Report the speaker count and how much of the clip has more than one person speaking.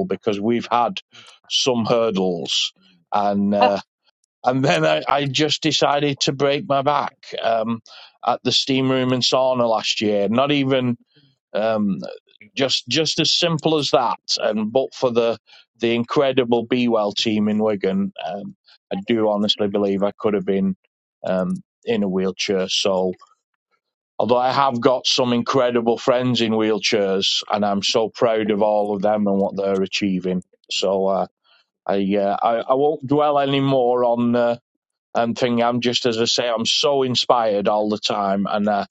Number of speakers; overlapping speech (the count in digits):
1, no overlap